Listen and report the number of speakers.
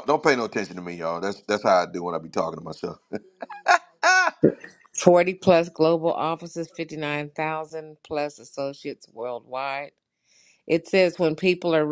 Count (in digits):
2